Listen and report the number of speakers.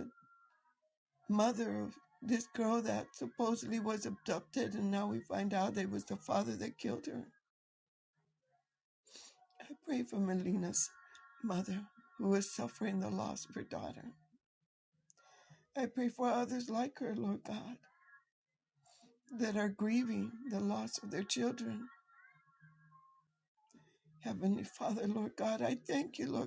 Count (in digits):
1